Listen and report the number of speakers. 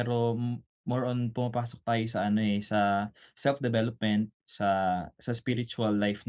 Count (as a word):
one